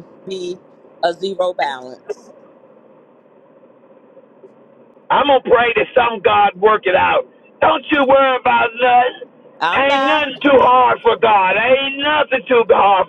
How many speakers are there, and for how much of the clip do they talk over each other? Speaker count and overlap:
2, about 4%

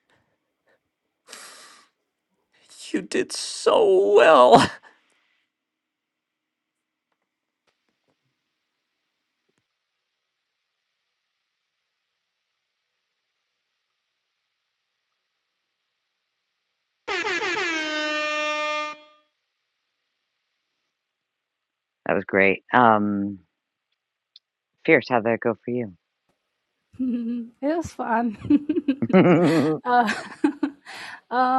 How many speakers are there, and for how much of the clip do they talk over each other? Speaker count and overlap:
3, no overlap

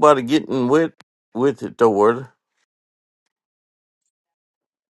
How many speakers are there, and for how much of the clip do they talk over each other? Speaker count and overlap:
1, no overlap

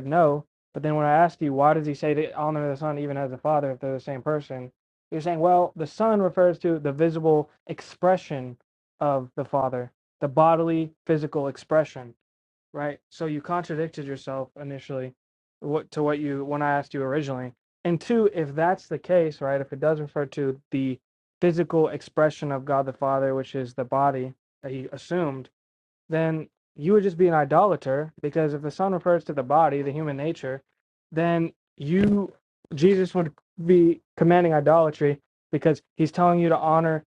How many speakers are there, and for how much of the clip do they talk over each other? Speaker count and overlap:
1, no overlap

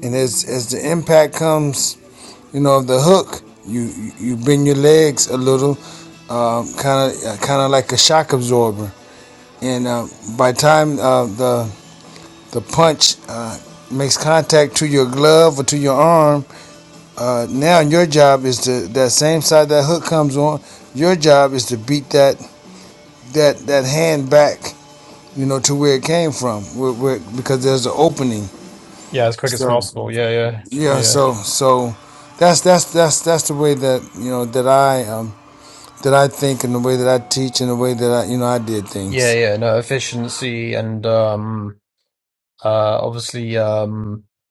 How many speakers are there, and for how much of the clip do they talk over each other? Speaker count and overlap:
2, about 3%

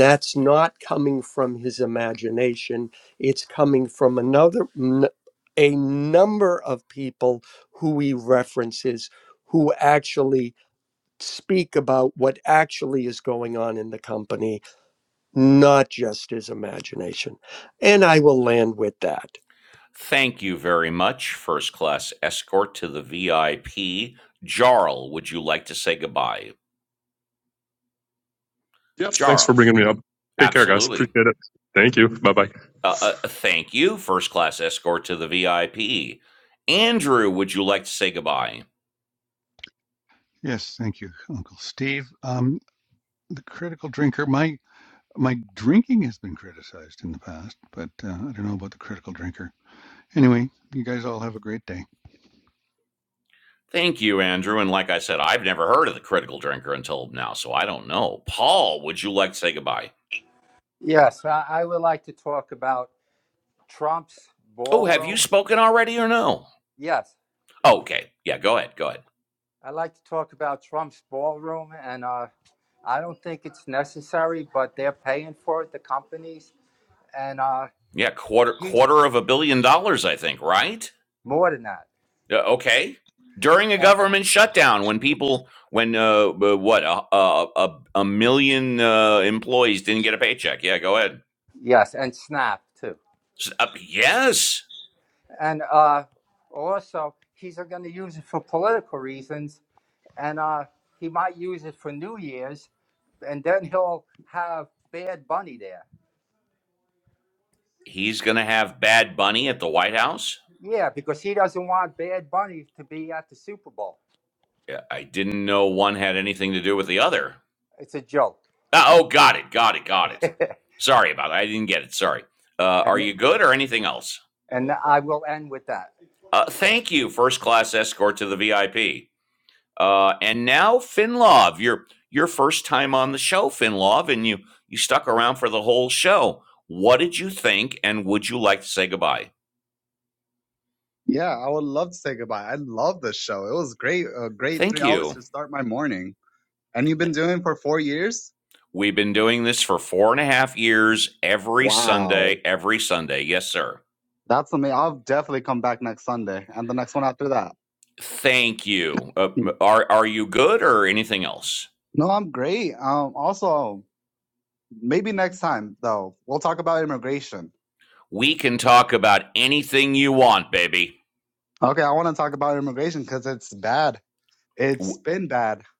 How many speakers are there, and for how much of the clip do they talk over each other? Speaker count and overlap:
6, about 2%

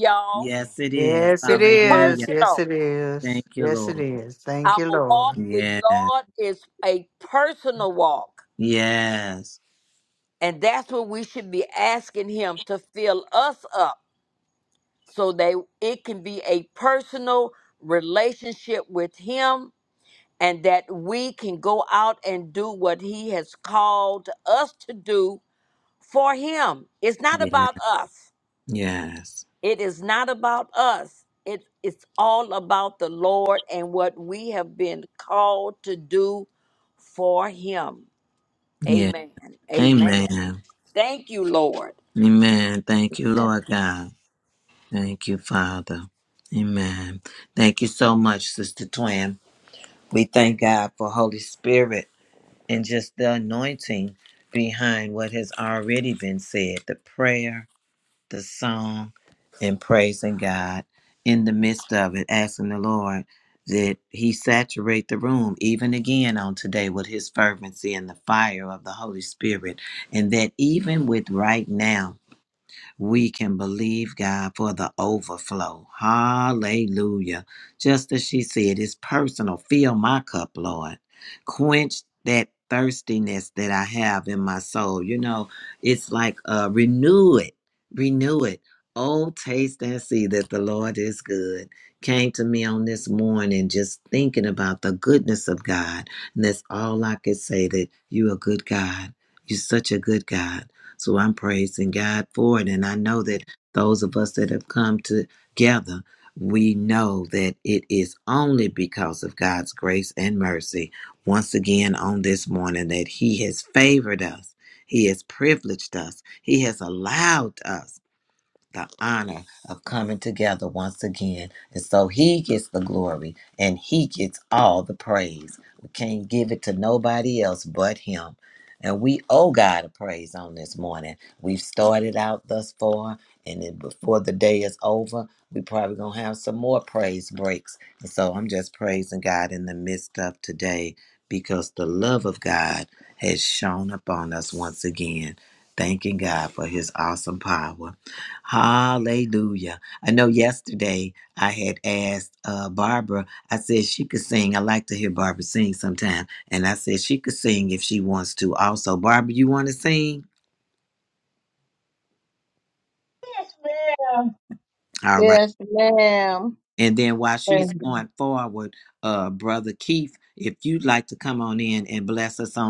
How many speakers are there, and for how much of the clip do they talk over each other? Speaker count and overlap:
4, about 3%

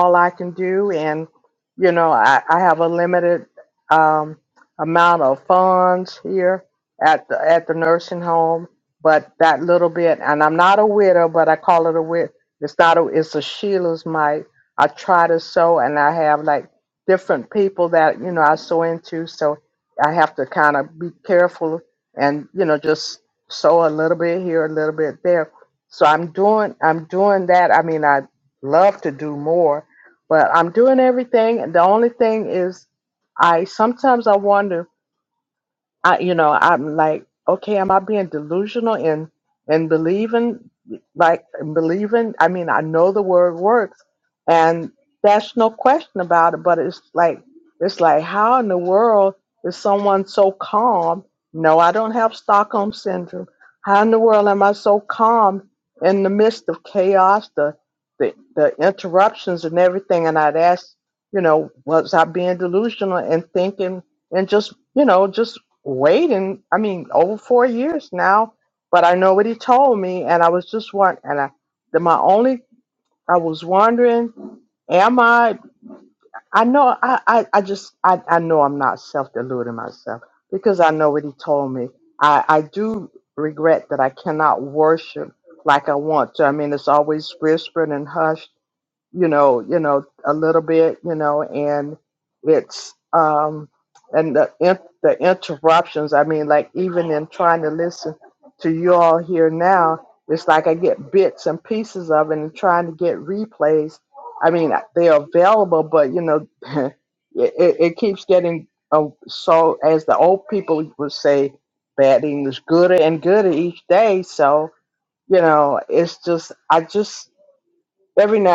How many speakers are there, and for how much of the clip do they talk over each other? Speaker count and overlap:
1, no overlap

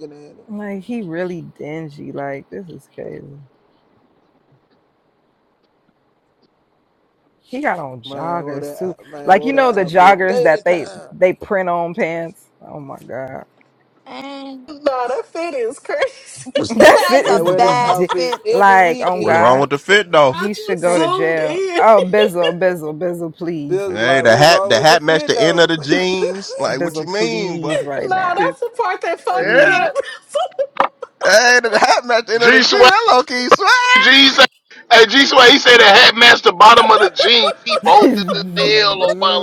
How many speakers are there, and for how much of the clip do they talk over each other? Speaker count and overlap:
6, about 31%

